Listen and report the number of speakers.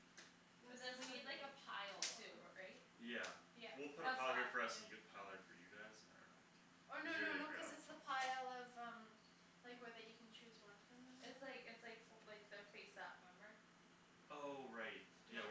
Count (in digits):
3